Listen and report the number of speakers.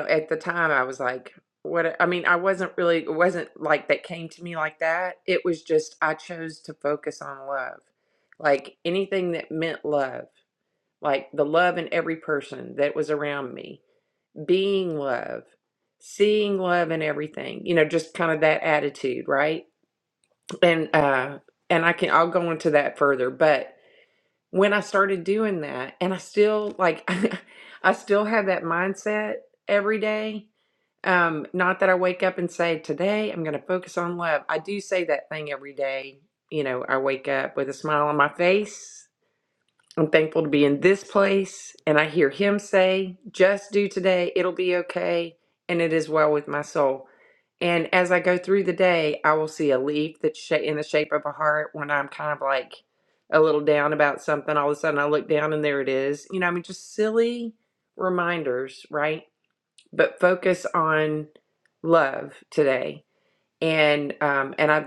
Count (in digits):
1